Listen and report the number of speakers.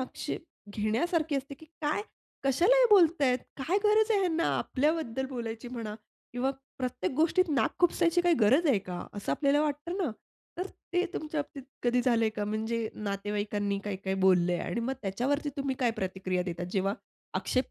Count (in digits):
1